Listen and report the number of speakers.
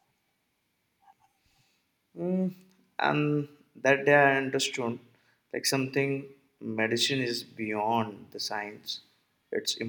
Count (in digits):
1